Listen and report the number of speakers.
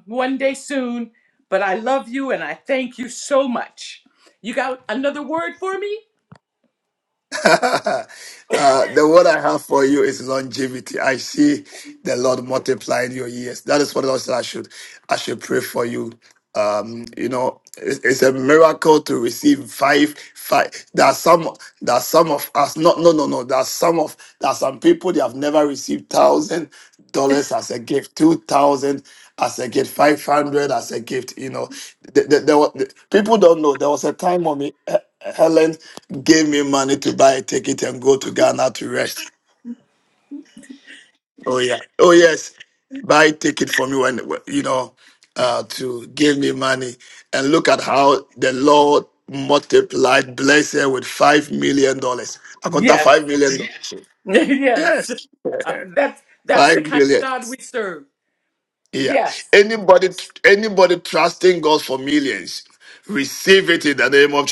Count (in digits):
2